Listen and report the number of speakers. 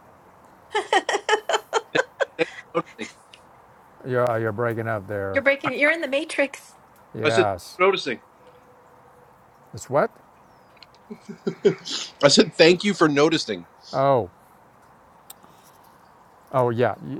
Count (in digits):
3